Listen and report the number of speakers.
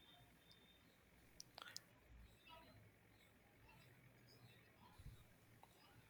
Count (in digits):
0